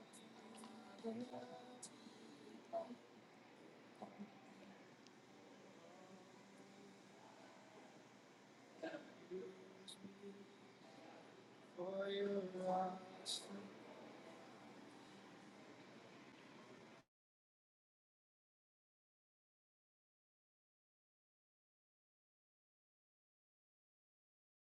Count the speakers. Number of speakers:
0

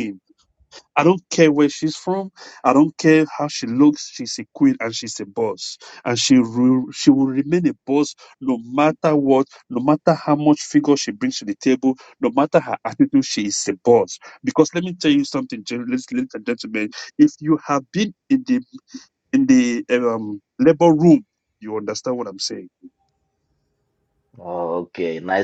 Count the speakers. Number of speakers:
2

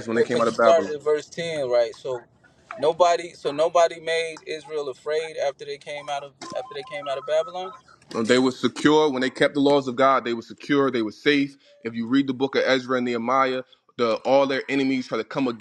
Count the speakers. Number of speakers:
2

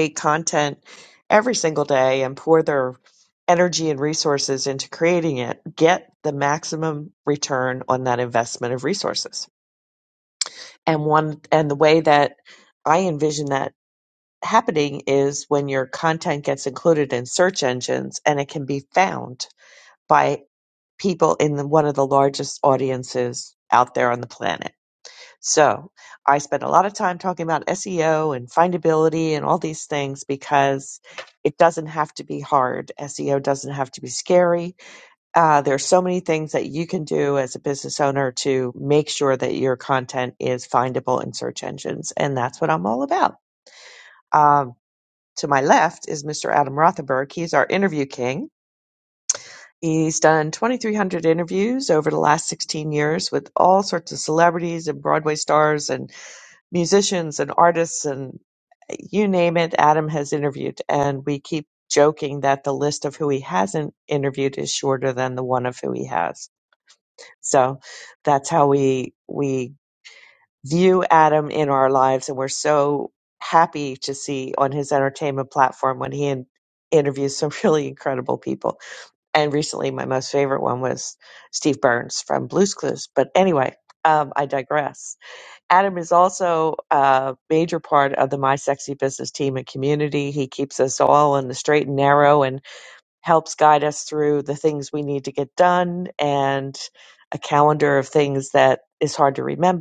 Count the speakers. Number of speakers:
1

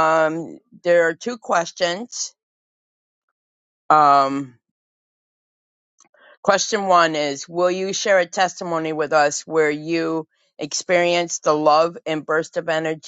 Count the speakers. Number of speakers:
1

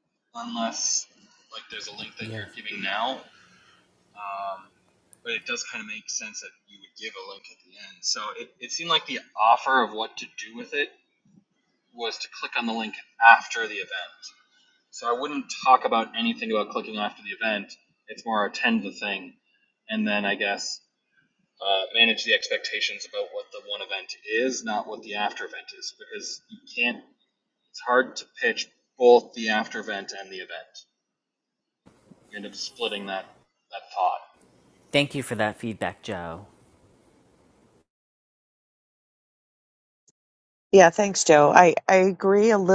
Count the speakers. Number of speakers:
3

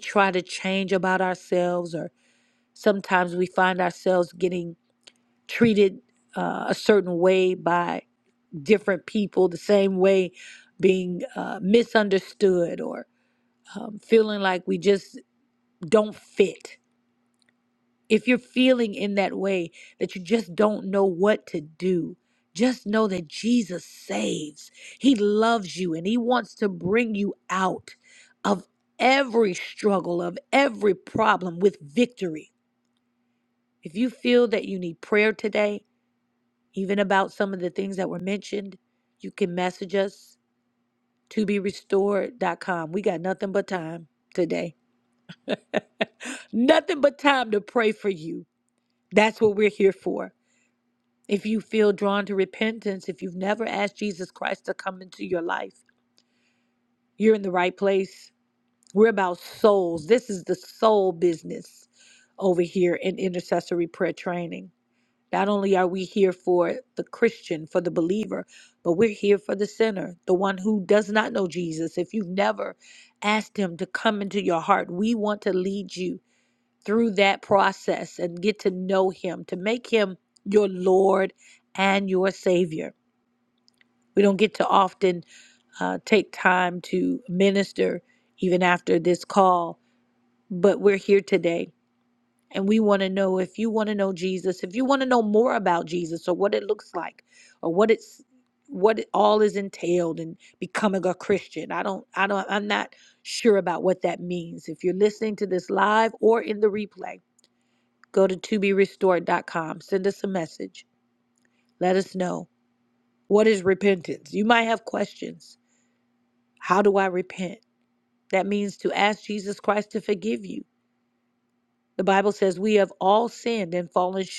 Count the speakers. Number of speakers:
1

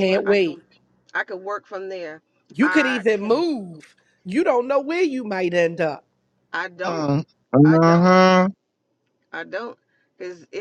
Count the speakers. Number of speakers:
3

